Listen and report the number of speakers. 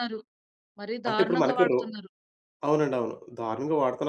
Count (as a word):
two